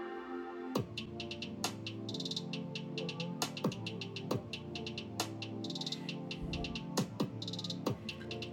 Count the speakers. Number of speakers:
0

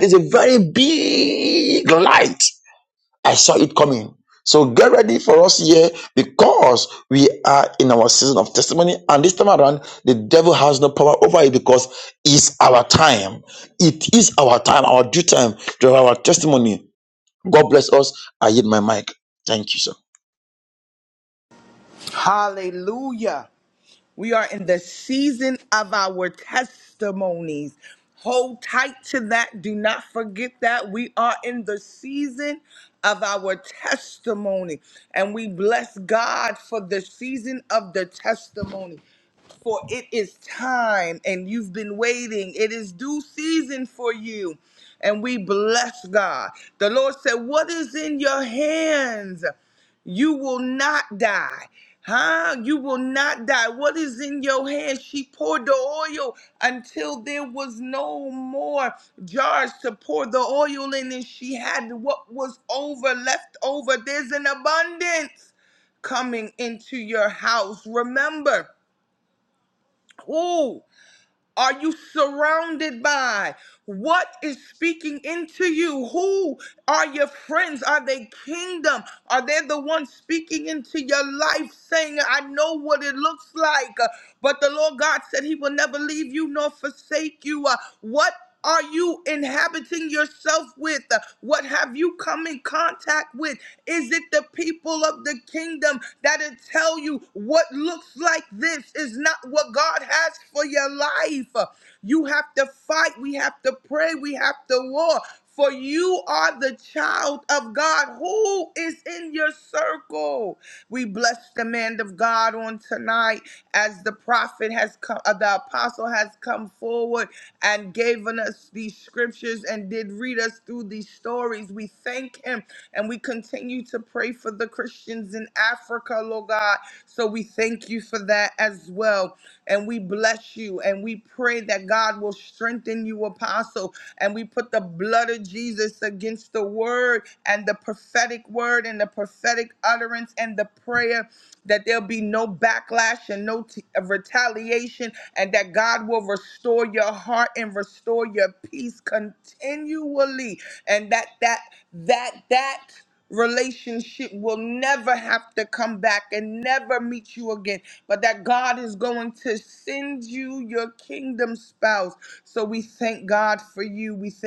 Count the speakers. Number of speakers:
2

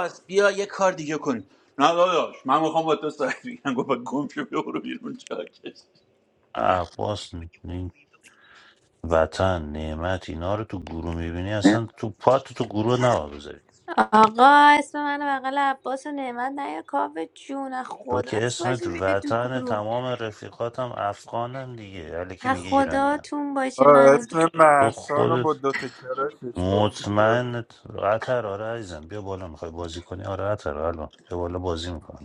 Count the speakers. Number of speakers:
4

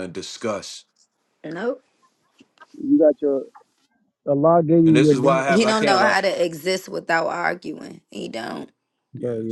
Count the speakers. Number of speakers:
3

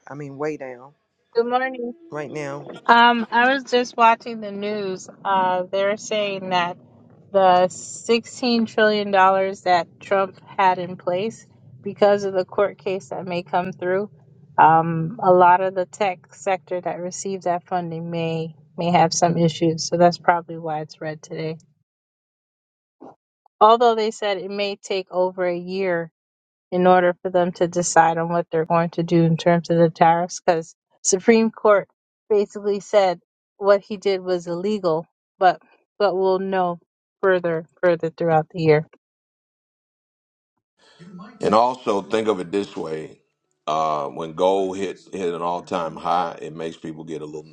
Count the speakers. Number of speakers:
3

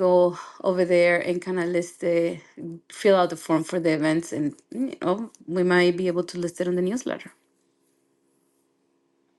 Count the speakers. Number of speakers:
1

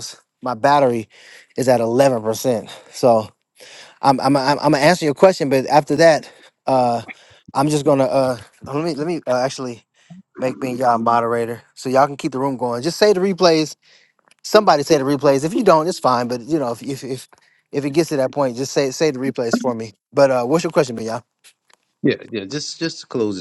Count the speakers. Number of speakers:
2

